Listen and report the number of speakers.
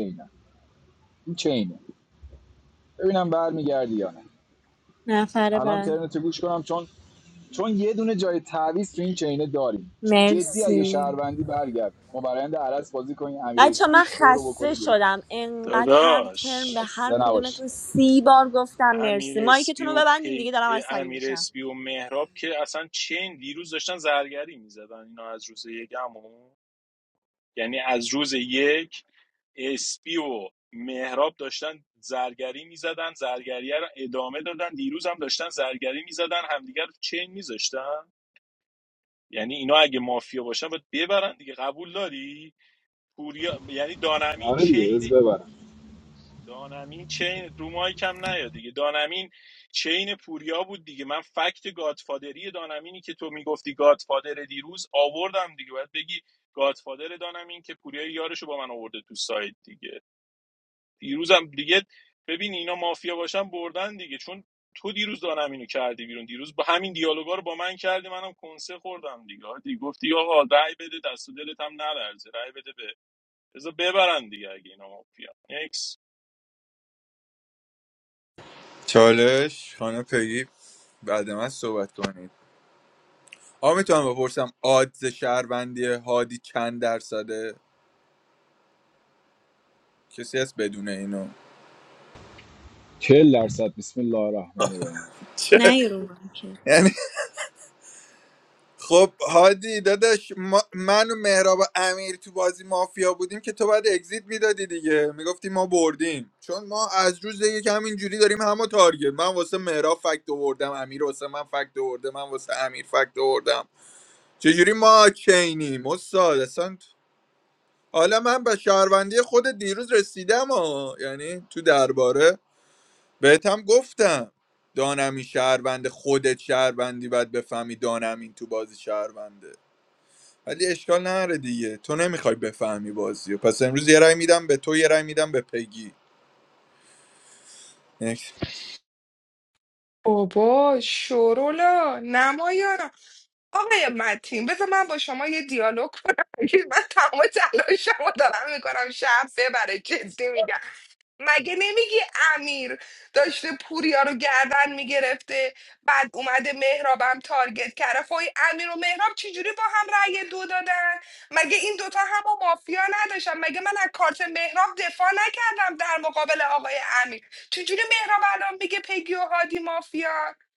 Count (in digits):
5